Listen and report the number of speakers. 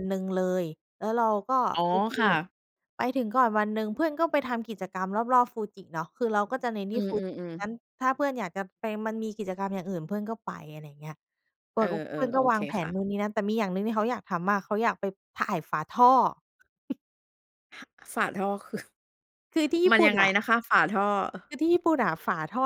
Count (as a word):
two